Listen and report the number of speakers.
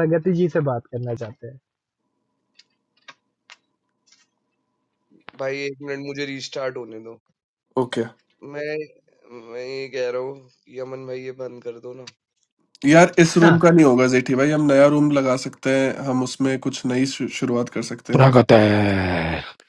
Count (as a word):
four